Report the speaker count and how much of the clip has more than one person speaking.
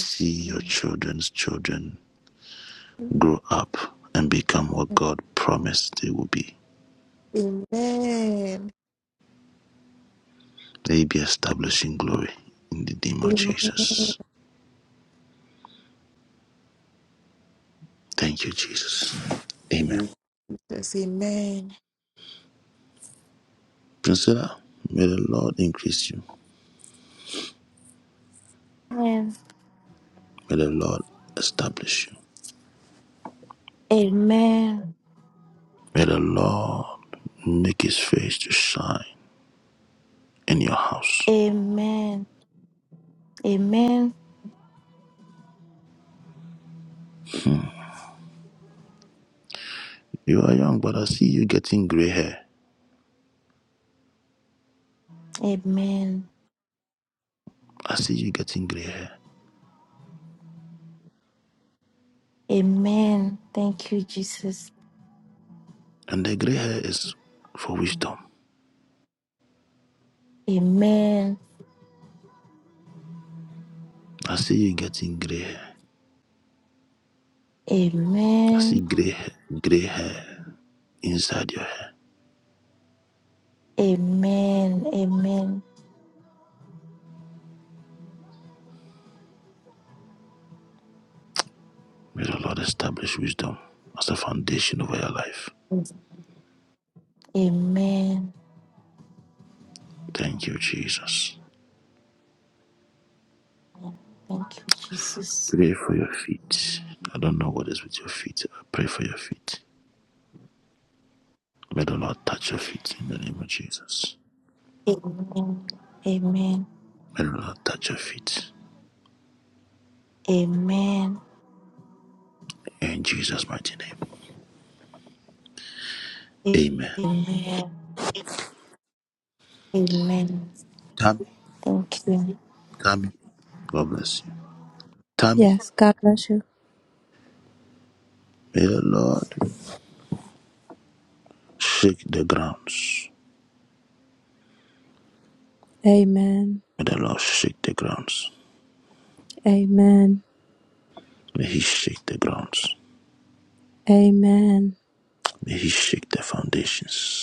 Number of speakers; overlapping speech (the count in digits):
4, about 1%